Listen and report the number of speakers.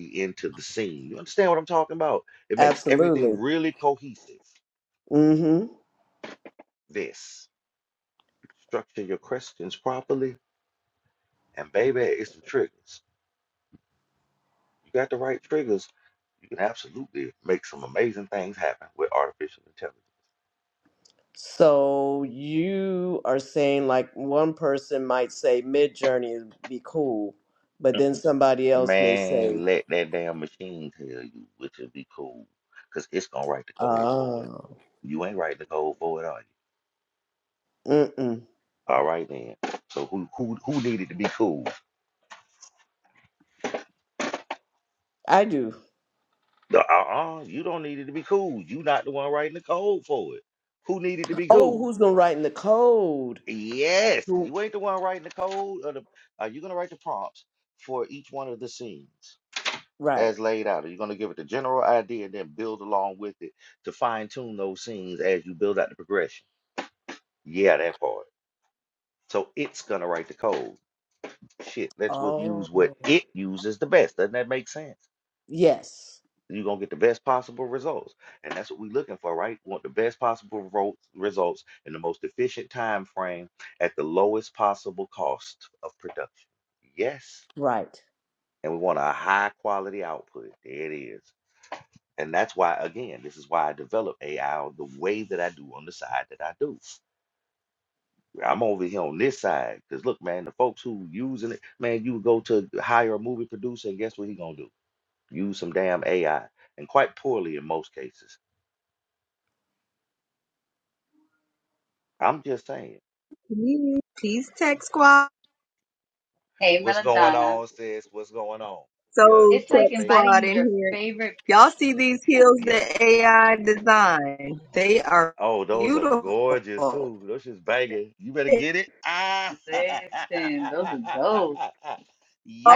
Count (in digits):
4